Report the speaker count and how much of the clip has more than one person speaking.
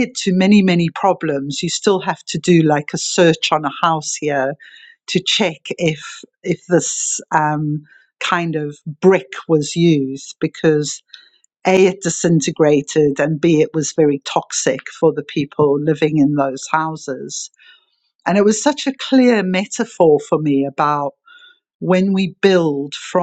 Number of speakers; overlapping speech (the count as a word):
one, no overlap